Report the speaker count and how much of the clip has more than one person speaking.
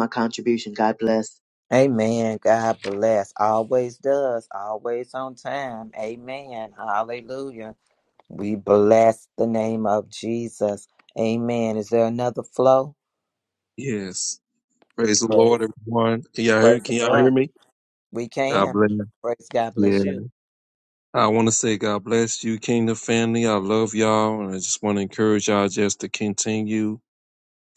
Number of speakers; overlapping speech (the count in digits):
3, about 6%